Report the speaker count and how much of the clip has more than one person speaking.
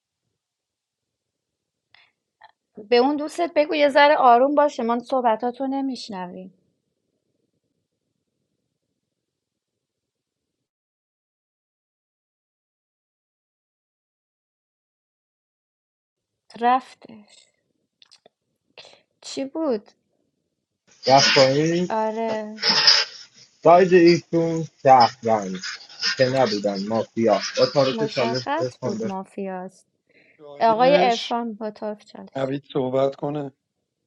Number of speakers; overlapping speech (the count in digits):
3, about 6%